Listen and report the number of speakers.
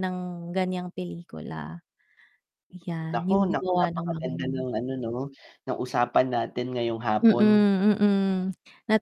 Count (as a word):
two